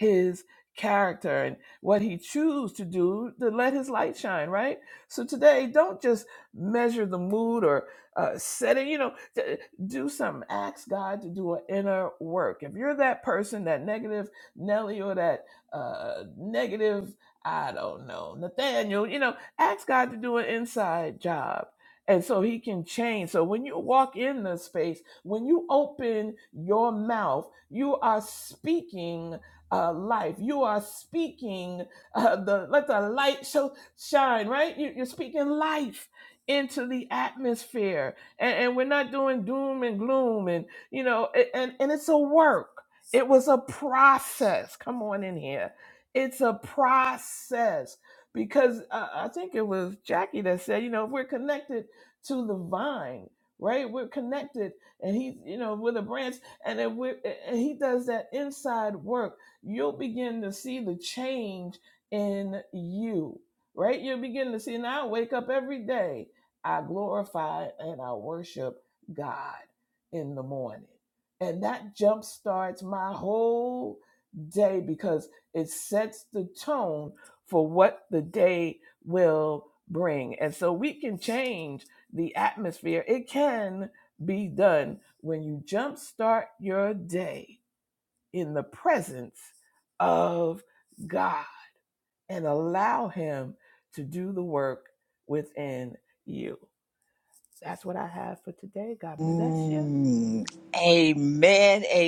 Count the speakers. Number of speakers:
2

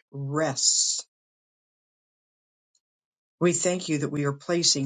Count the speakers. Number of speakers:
1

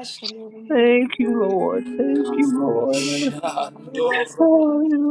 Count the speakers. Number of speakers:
3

